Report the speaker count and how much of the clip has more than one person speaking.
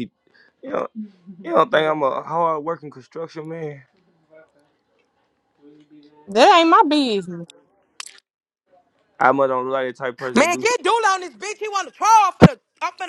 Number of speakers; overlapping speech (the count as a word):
three, about 2%